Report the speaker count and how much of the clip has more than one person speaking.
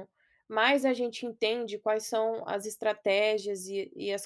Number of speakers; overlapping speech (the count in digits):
1, no overlap